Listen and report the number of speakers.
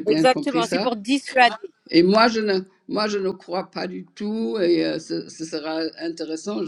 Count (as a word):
two